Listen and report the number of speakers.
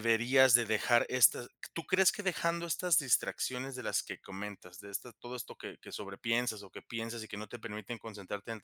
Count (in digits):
1